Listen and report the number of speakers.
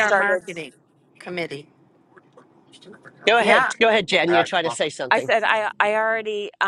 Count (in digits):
3